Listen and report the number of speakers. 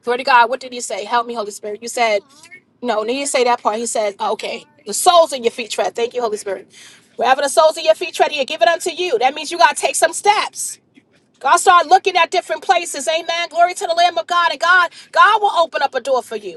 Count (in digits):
1